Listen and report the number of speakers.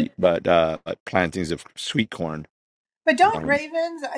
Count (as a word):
two